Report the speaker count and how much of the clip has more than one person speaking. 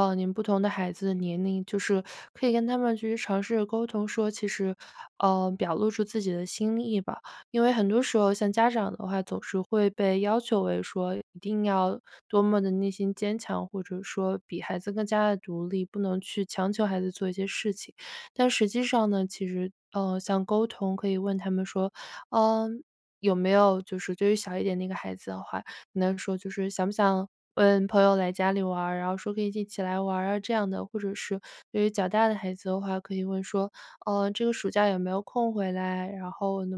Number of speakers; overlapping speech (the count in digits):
1, no overlap